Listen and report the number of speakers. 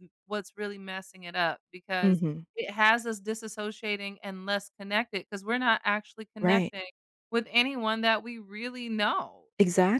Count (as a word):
two